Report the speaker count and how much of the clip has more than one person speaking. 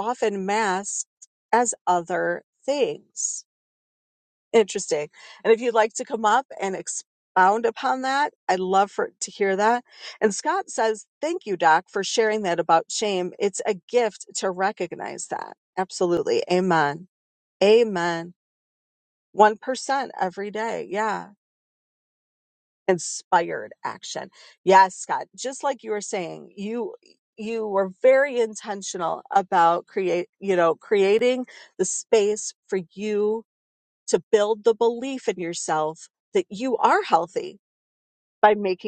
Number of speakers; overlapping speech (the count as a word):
one, no overlap